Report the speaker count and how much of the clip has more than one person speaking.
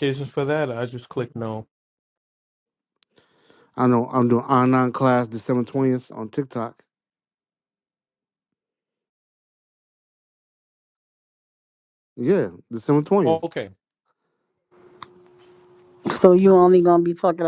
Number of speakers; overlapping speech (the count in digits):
3, about 1%